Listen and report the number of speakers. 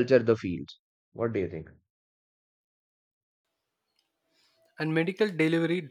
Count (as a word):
two